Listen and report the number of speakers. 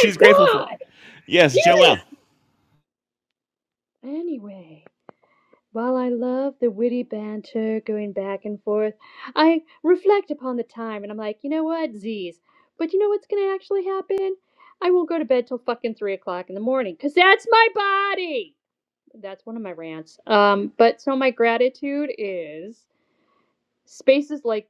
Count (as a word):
two